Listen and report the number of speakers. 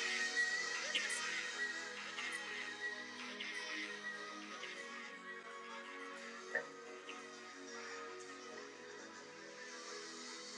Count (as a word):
zero